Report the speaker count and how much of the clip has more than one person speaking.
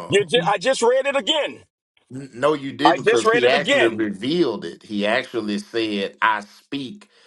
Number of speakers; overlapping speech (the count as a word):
two, about 18%